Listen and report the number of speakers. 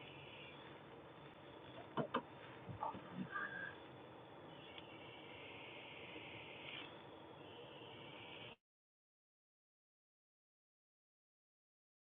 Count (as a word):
zero